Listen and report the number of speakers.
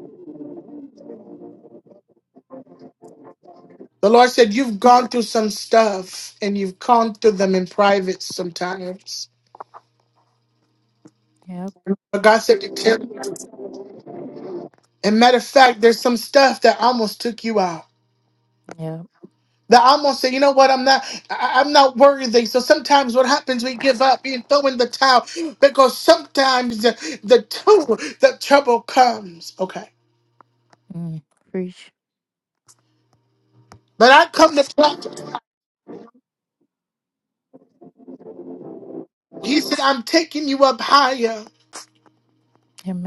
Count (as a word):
two